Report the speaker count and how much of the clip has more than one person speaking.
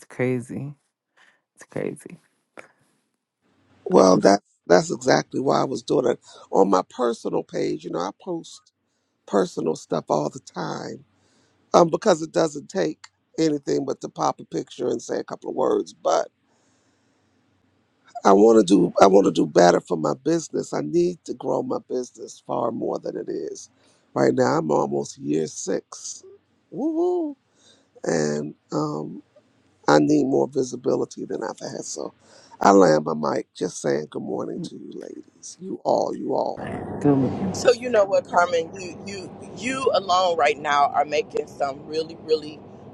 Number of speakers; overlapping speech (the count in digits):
3, under 1%